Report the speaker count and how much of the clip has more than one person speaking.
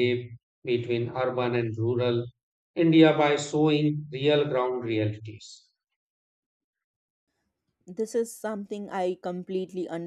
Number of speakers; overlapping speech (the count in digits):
2, no overlap